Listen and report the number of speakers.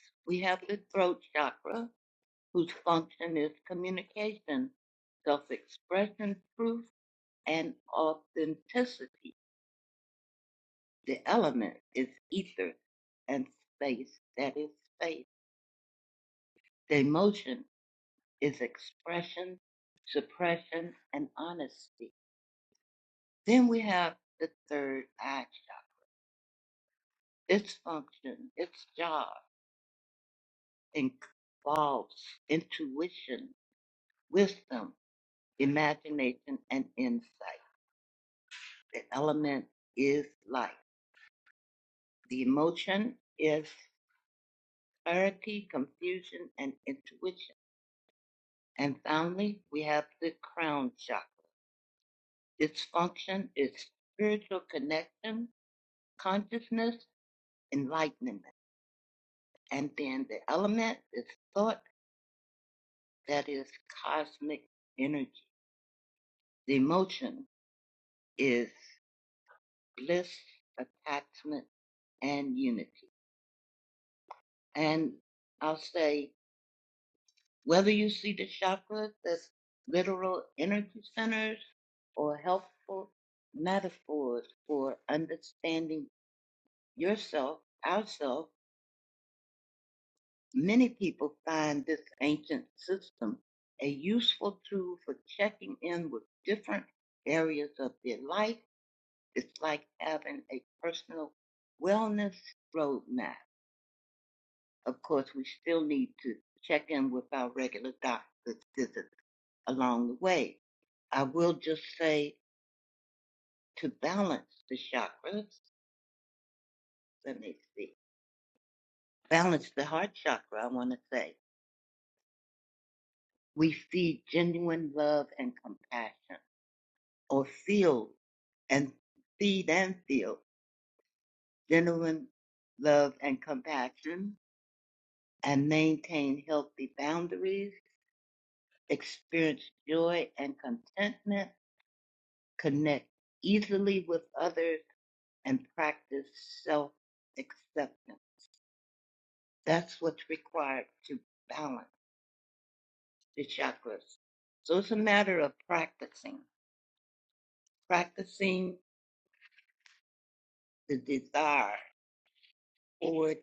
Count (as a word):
one